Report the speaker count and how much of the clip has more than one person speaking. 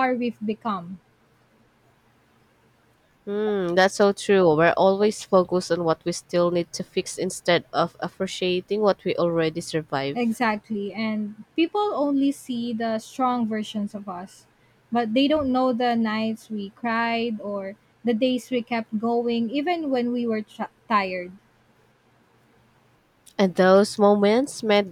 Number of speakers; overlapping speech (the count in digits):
2, under 1%